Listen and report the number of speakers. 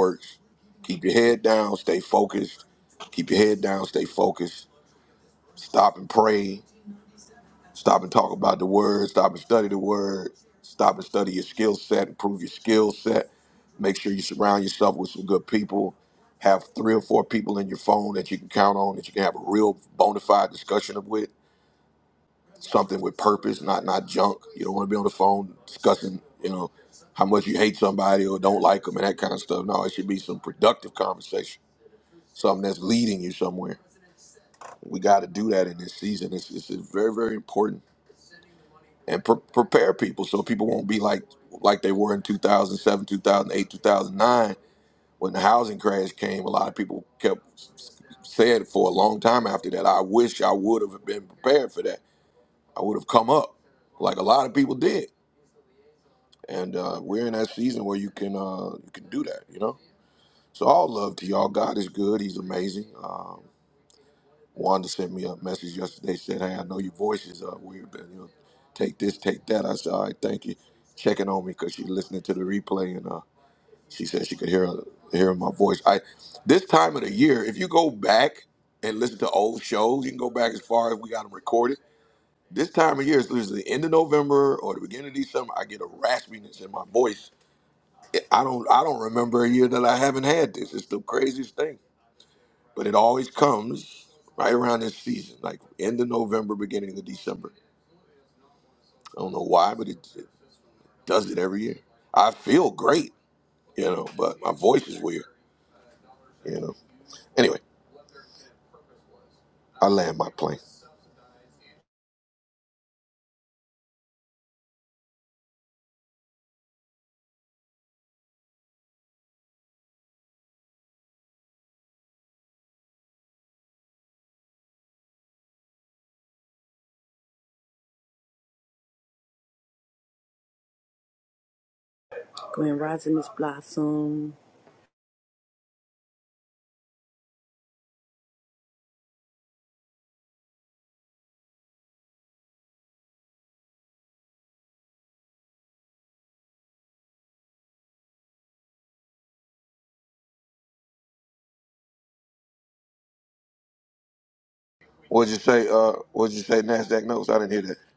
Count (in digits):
2